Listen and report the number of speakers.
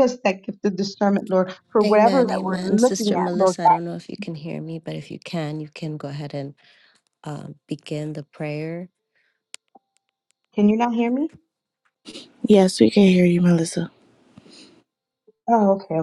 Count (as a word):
three